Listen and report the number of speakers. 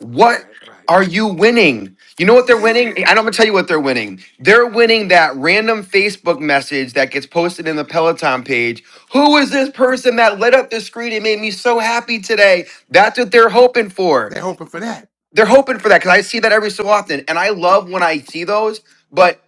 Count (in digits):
2